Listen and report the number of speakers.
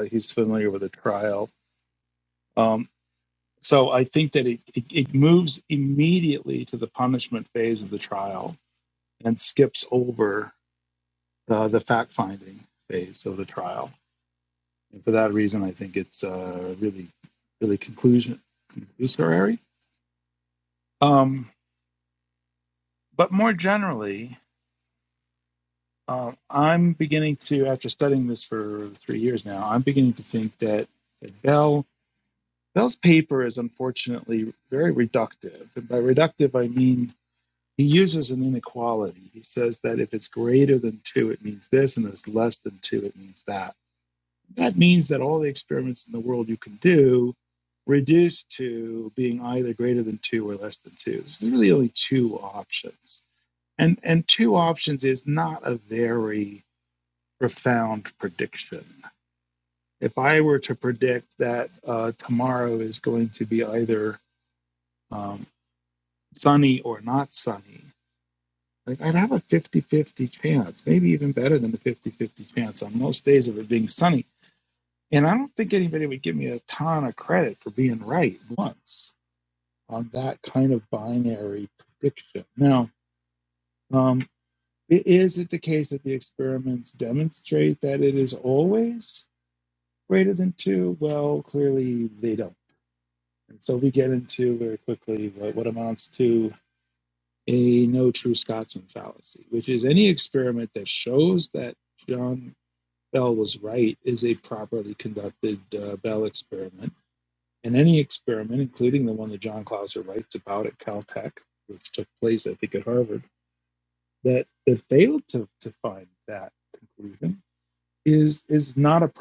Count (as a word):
one